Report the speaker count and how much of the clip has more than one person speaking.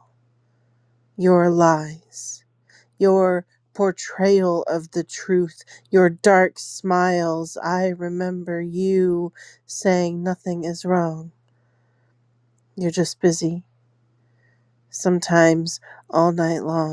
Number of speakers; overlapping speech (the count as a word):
one, no overlap